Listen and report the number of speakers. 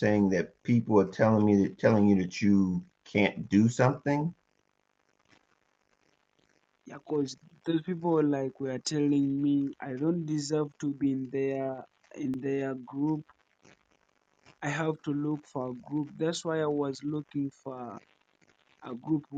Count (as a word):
two